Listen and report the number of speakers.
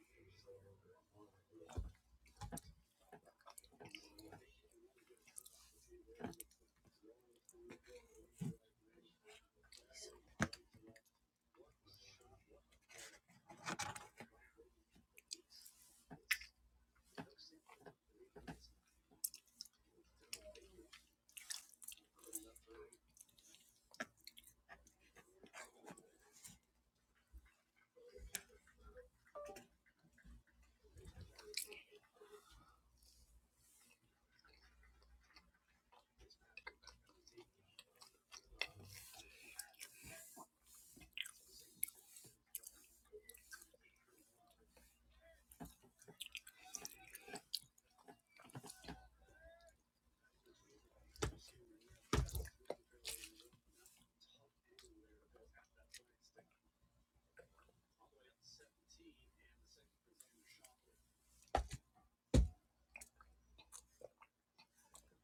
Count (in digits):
0